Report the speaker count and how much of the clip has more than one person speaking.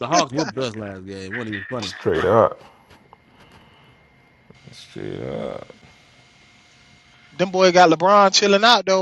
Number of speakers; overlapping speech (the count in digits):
3, about 1%